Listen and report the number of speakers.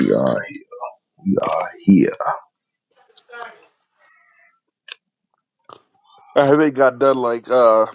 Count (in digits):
2